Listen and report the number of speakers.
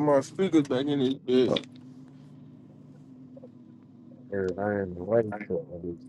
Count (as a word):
two